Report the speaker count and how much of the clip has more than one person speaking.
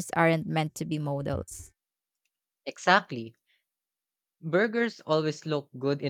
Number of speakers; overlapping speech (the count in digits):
2, no overlap